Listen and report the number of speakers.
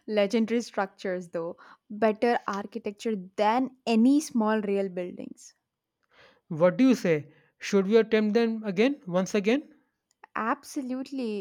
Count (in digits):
2